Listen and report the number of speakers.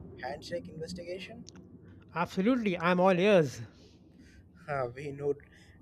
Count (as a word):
two